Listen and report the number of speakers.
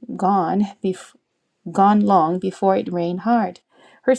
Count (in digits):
1